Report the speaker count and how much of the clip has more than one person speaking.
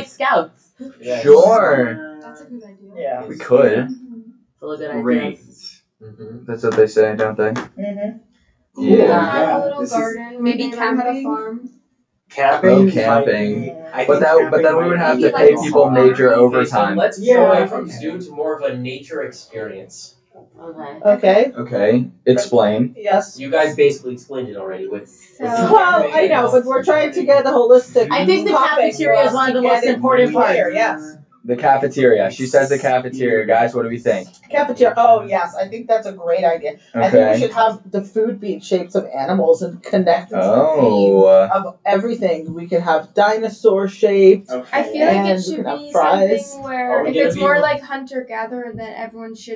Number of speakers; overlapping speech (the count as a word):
seven, about 43%